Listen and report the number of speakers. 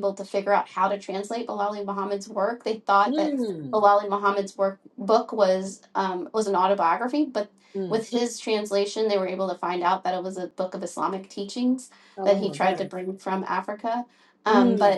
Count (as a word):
two